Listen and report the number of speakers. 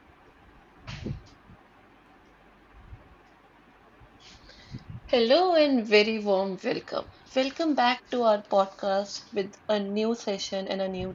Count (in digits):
1